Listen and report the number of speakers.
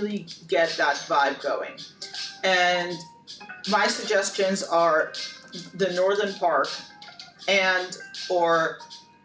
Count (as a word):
one